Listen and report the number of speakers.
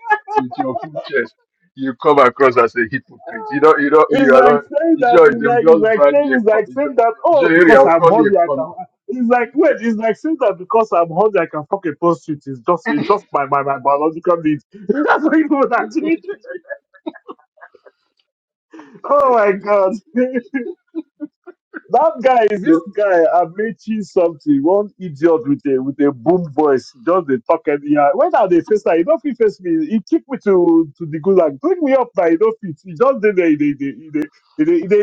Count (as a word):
two